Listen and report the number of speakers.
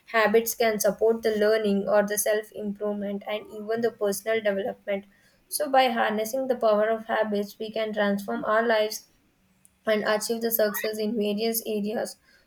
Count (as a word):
one